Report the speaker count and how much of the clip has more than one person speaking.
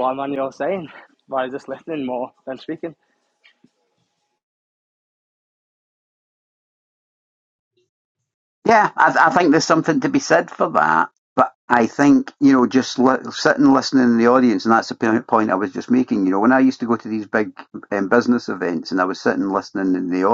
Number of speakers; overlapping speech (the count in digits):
2, no overlap